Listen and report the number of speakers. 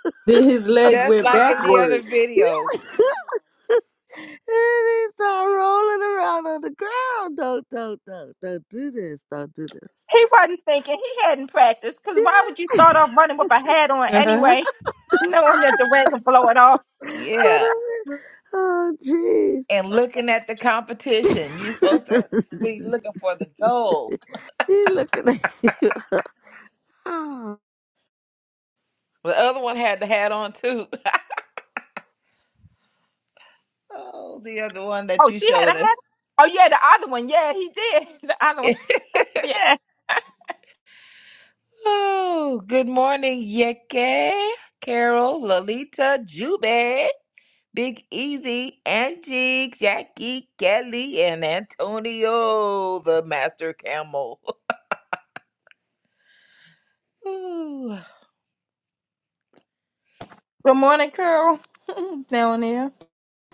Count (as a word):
four